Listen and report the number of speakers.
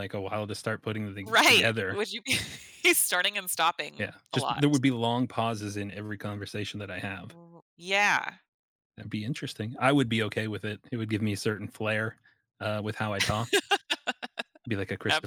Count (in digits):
2